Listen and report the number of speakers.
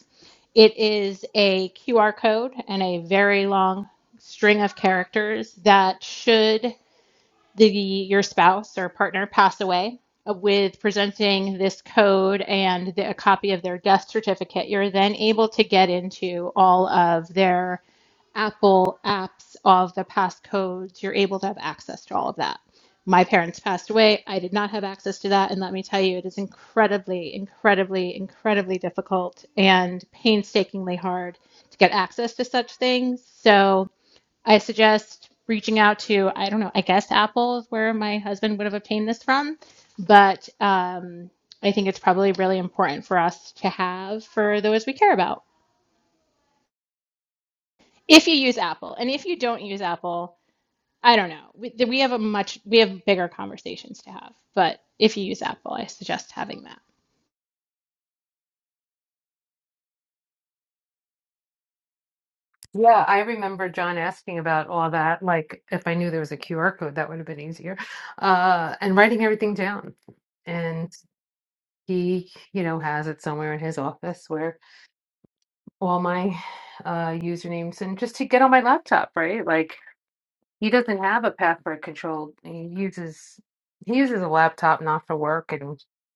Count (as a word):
two